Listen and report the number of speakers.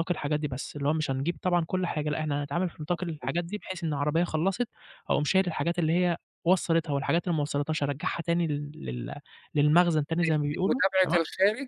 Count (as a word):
two